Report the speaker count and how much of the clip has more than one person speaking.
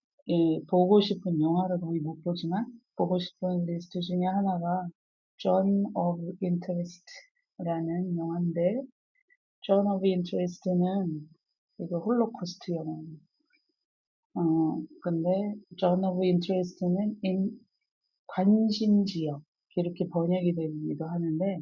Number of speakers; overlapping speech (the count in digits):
1, no overlap